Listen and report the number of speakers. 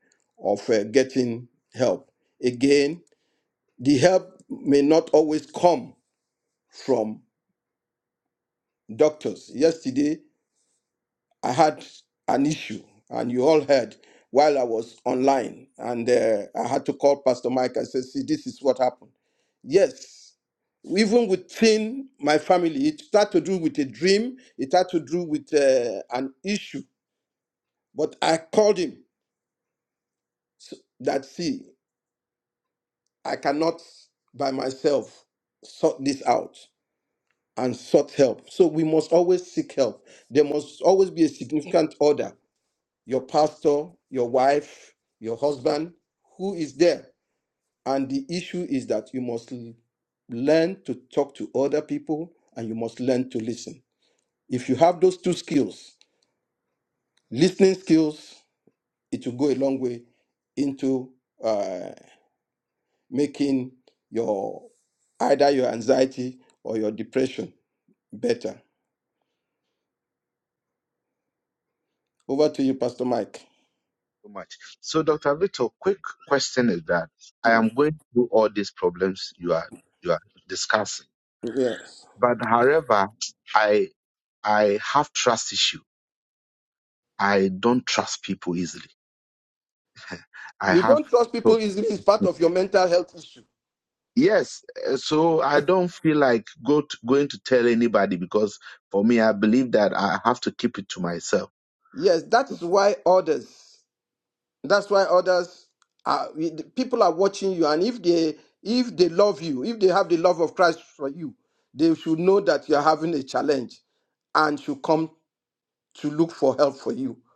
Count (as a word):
two